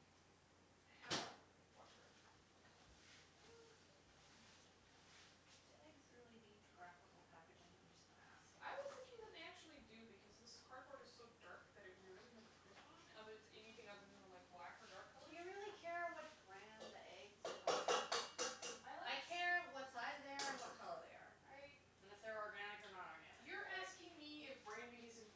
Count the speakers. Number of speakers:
2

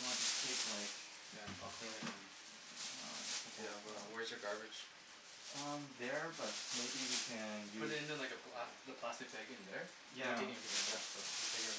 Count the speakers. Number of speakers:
3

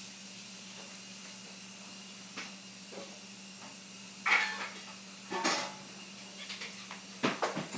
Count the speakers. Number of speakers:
0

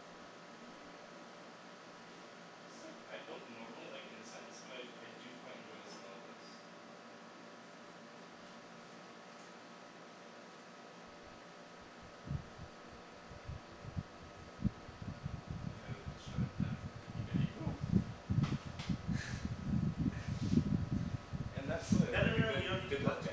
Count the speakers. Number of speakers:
2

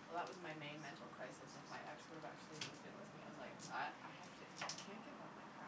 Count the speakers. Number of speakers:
1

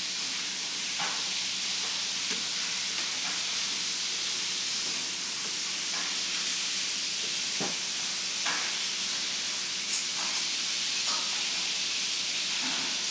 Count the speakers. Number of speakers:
0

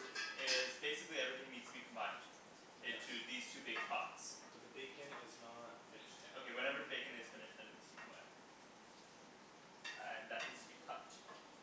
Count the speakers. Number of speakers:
2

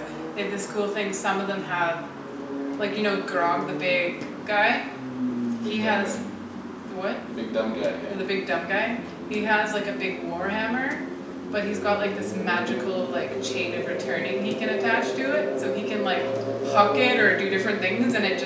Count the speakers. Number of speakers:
2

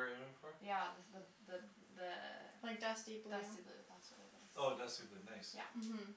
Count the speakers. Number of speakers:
3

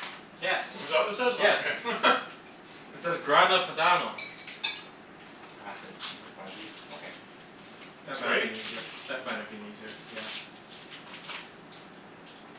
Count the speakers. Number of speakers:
3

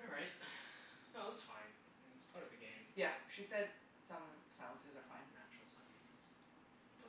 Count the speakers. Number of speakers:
2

